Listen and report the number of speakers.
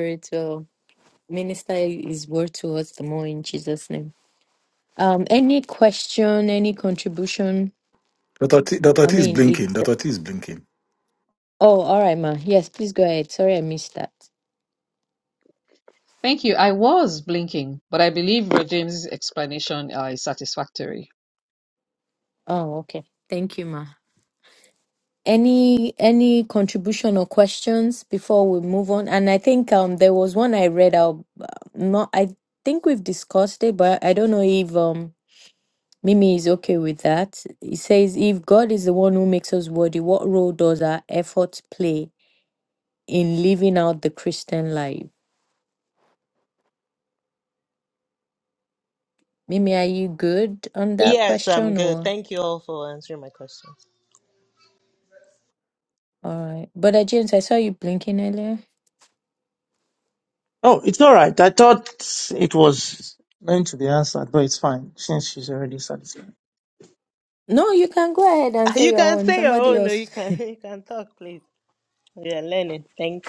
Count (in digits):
5